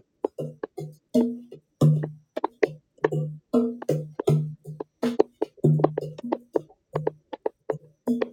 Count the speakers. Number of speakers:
zero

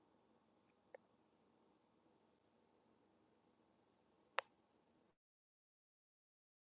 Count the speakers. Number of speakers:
zero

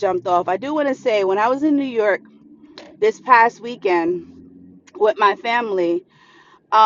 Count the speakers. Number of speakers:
one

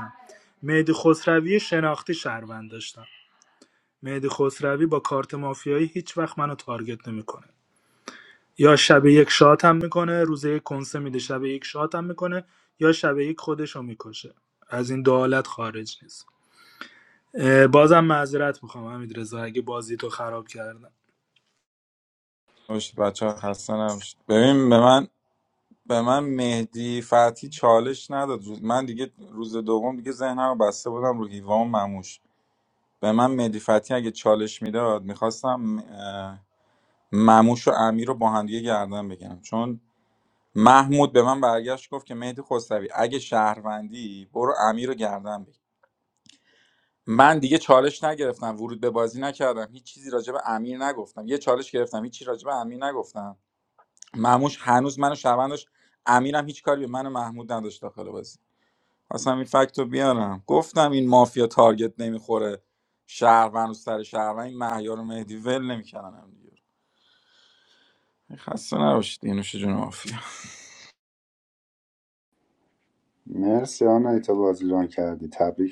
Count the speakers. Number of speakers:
three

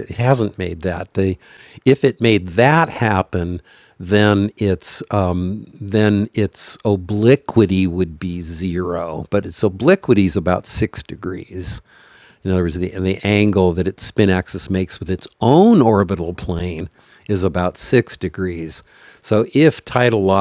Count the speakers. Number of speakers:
one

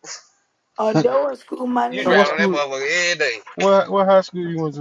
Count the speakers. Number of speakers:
three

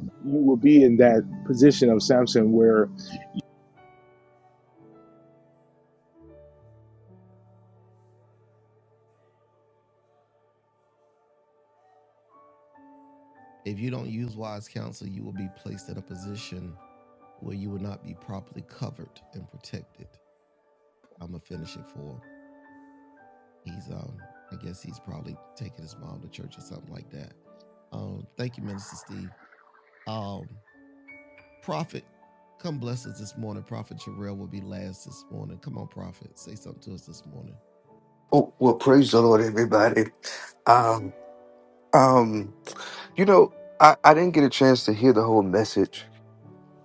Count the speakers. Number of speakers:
three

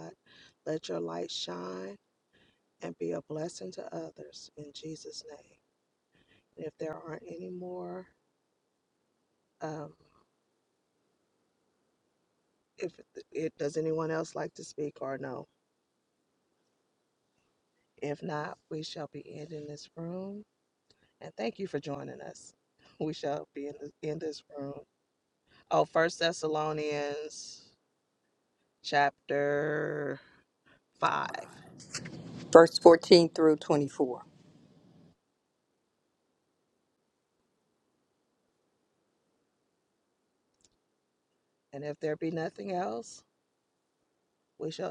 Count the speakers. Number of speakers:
two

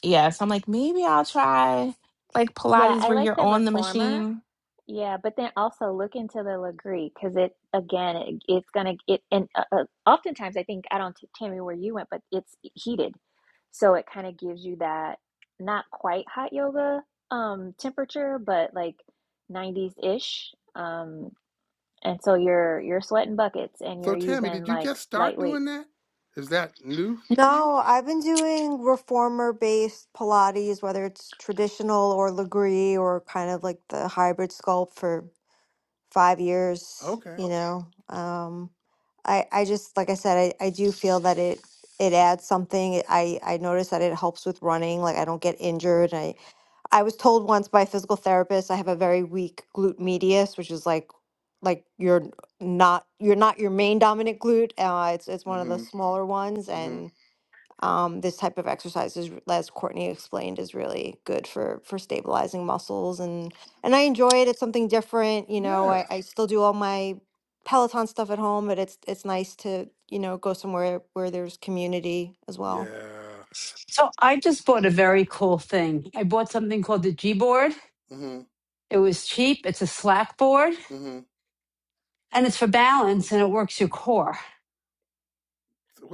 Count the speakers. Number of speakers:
five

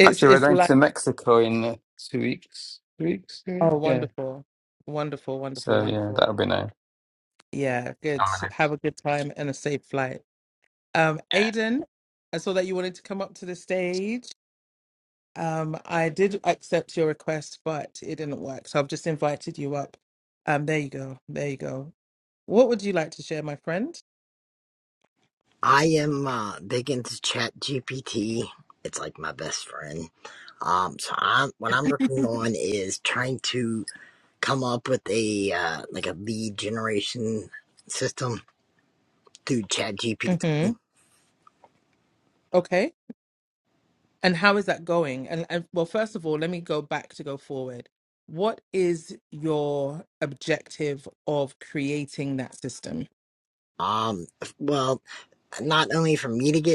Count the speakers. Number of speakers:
three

